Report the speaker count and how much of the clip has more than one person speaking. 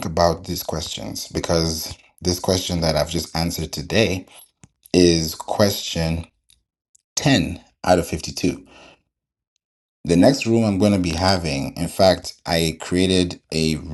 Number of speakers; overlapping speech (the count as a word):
one, no overlap